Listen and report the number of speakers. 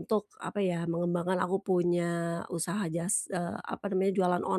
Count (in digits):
1